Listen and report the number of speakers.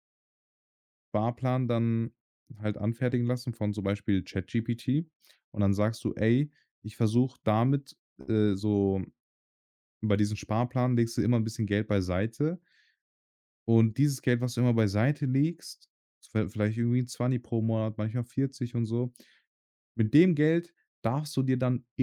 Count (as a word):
one